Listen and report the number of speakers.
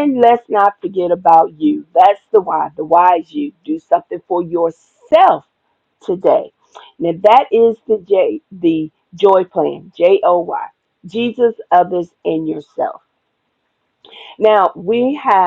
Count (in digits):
1